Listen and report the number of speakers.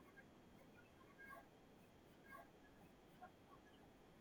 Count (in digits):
0